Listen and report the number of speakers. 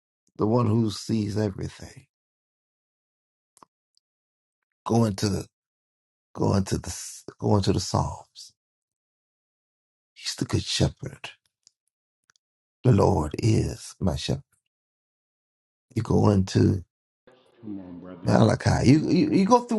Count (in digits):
2